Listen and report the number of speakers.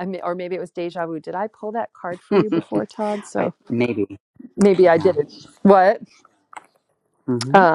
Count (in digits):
2